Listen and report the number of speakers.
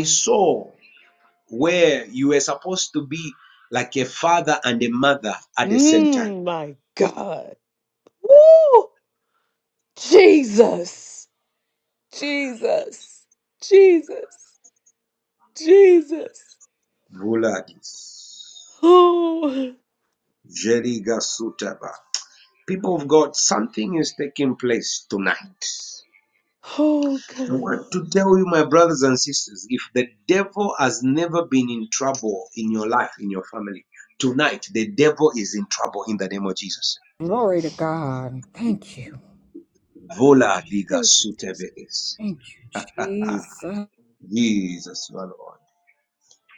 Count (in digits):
3